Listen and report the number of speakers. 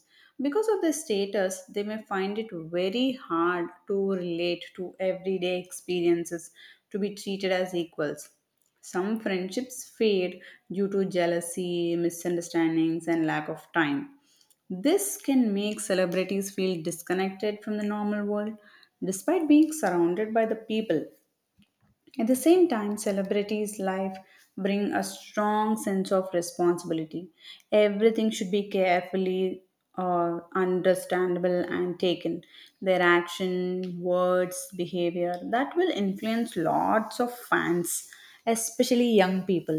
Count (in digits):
1